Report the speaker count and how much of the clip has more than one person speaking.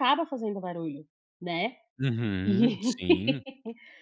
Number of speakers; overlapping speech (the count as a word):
two, about 9%